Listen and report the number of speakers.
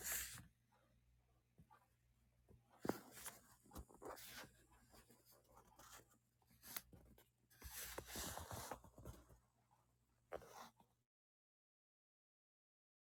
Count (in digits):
0